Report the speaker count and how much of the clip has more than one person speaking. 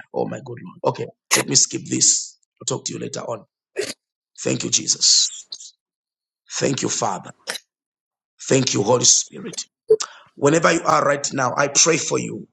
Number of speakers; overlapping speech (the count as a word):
one, no overlap